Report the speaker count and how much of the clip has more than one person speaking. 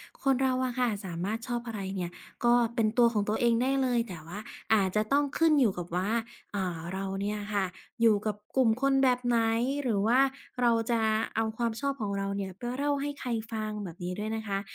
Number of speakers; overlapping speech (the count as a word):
one, no overlap